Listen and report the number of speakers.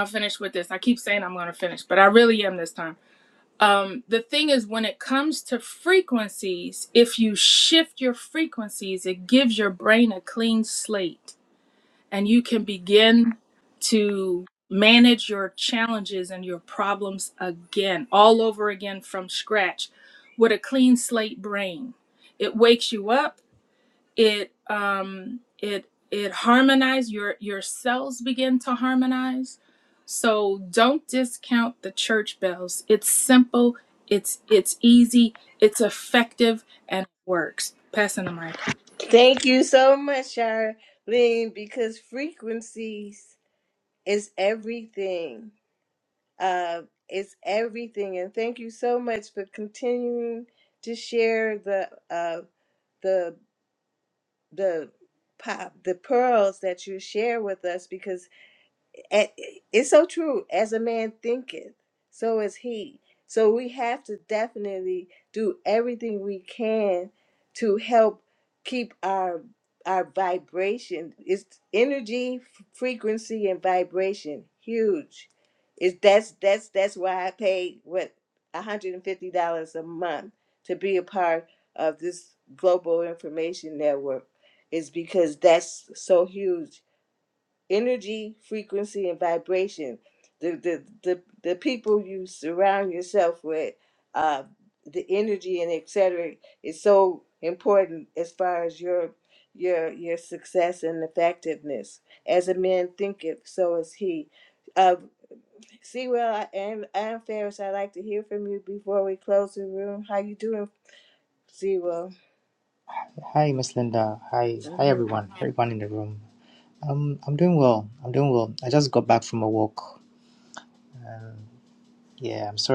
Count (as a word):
three